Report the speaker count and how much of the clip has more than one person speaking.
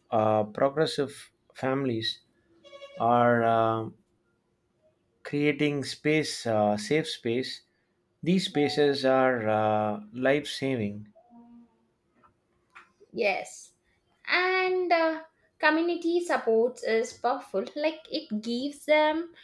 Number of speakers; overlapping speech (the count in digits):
2, no overlap